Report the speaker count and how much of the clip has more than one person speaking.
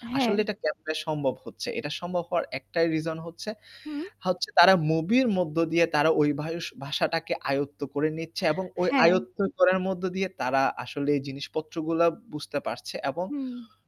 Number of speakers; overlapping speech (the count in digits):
2, about 5%